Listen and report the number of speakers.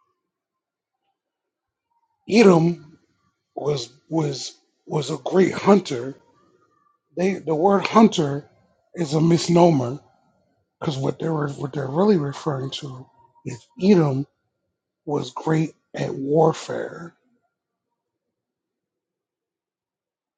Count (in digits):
1